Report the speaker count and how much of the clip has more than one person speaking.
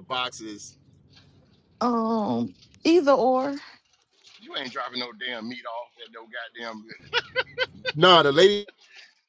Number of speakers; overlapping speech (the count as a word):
three, no overlap